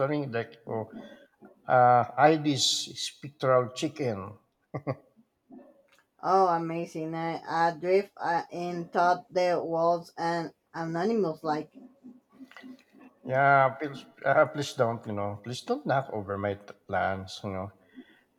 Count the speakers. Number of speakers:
2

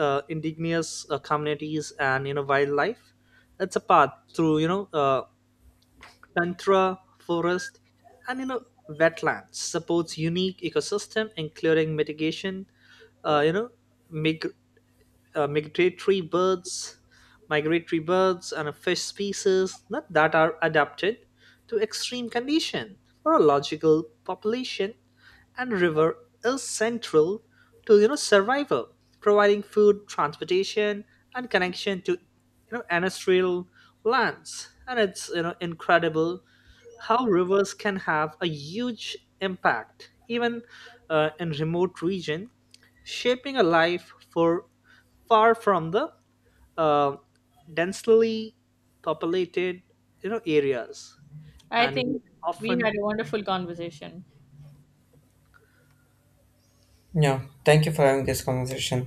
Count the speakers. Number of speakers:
3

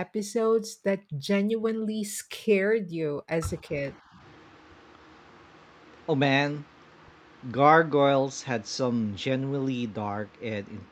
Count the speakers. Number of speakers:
2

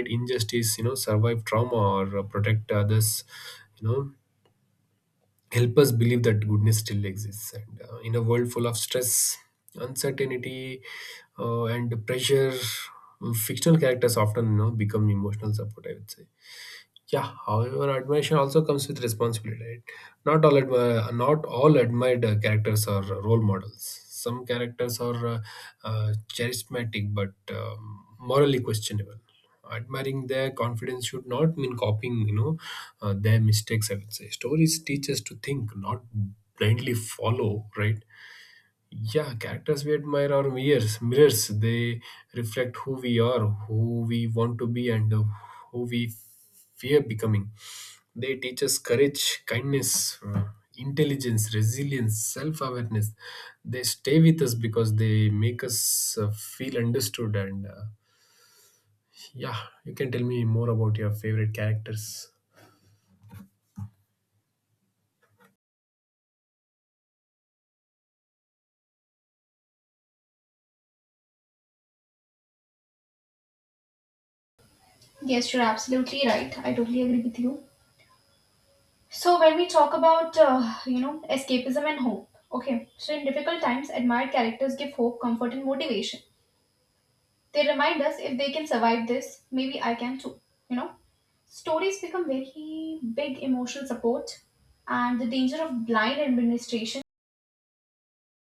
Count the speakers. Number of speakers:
2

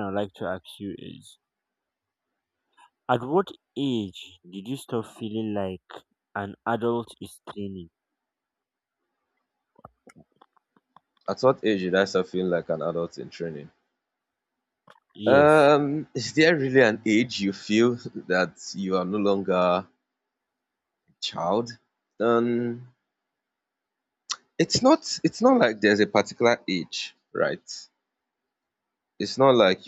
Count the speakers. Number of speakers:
2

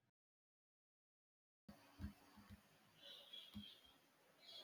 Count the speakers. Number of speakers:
0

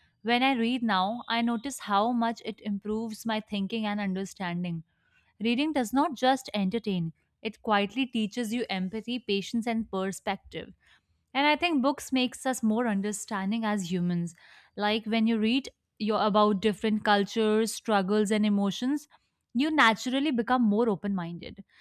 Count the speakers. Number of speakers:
1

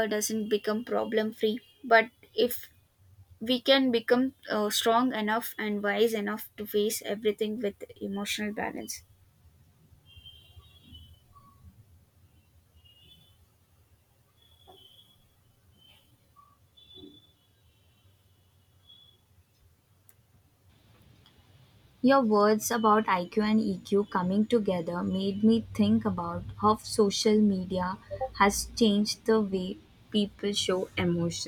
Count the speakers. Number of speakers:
2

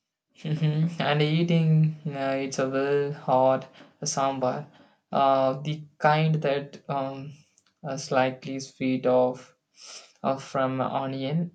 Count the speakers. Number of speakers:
1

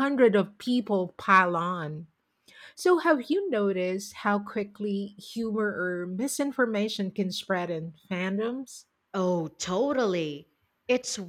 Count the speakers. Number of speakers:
2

